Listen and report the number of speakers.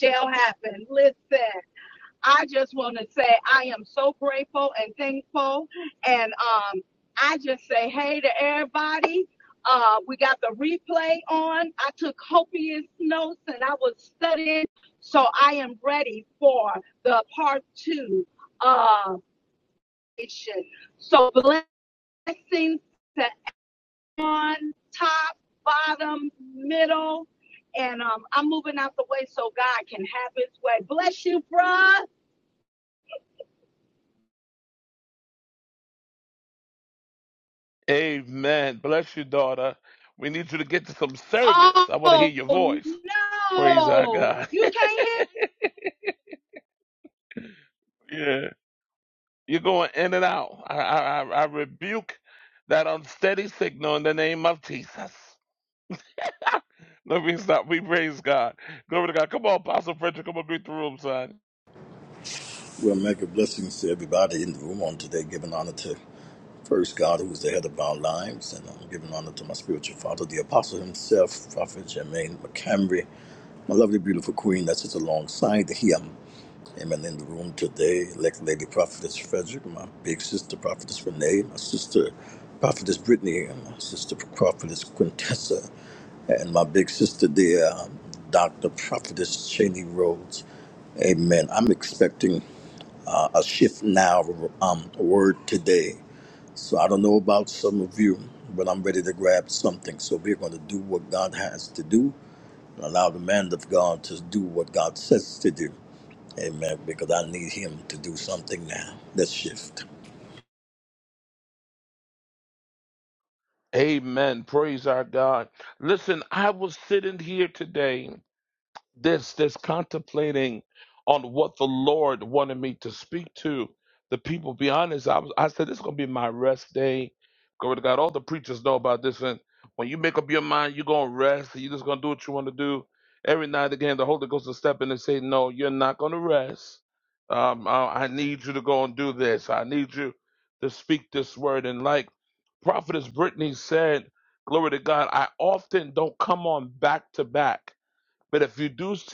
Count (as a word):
three